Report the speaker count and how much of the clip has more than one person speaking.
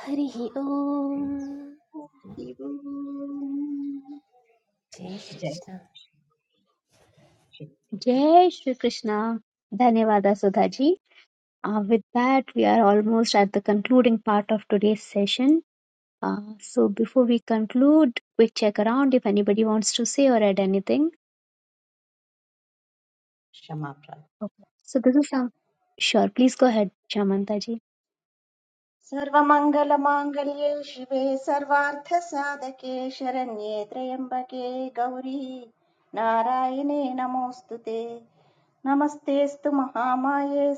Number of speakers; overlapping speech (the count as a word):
three, about 1%